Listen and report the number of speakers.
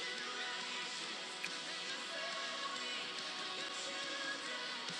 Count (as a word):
zero